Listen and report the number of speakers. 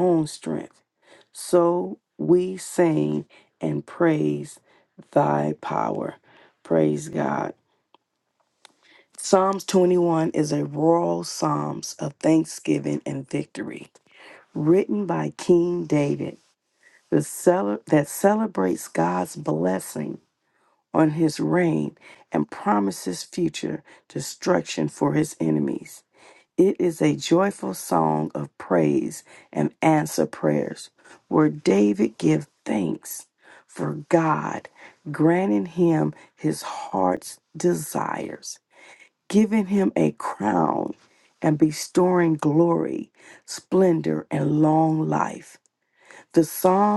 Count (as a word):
one